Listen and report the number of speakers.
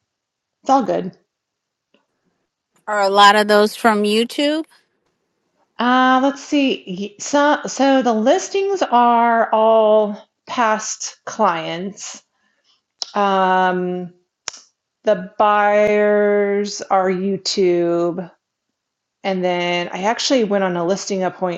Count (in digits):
2